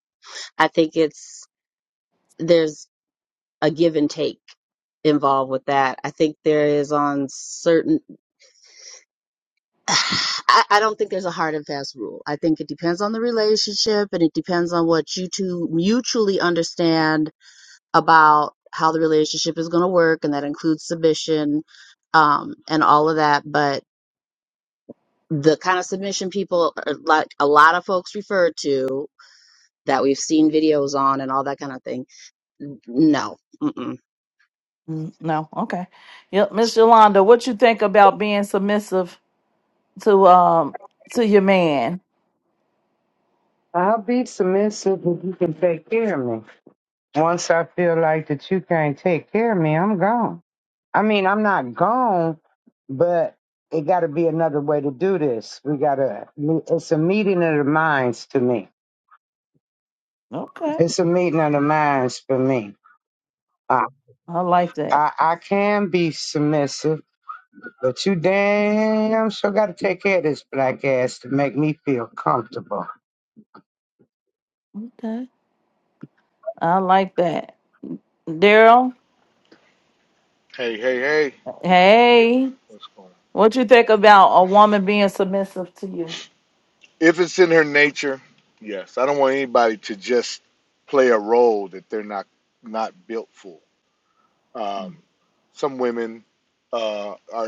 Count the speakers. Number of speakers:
four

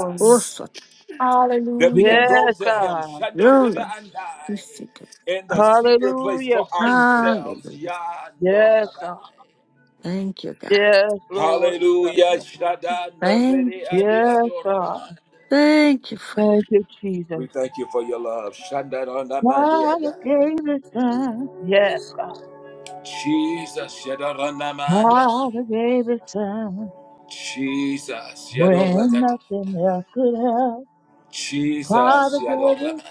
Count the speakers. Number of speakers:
four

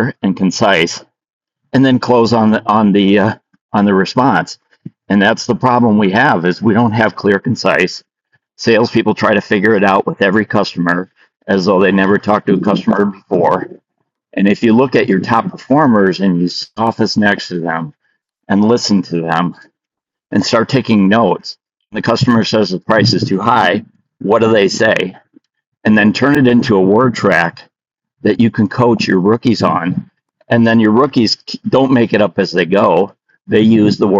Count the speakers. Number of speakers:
one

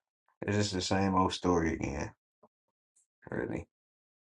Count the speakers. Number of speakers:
one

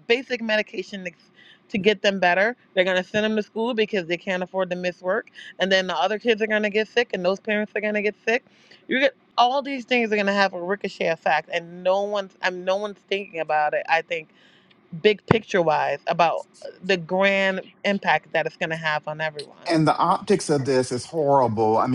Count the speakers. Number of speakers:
two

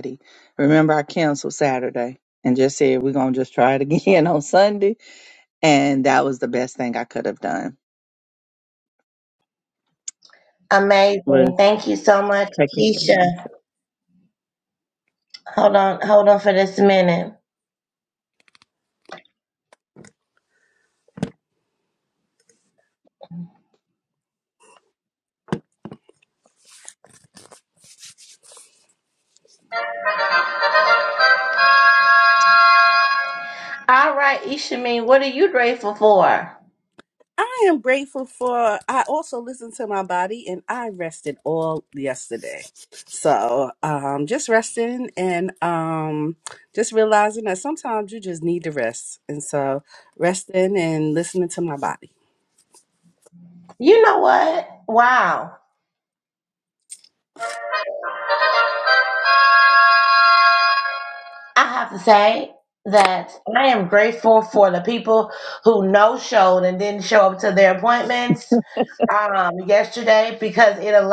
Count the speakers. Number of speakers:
three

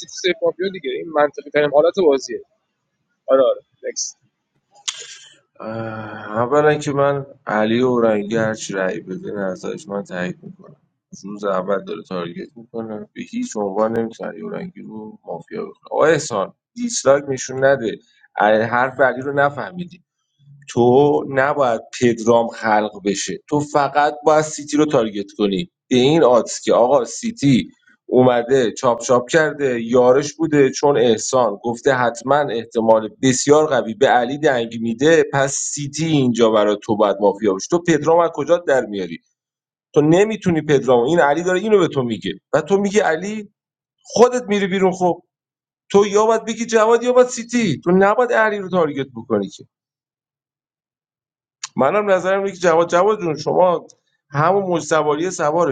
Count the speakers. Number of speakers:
two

